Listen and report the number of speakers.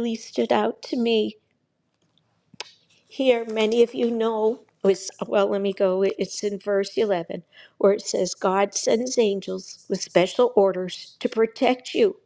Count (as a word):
one